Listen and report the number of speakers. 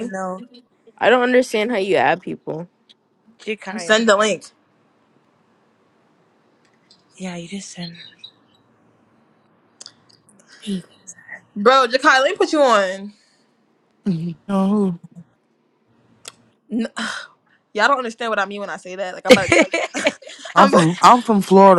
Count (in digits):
4